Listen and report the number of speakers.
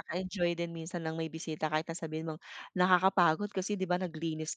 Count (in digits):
1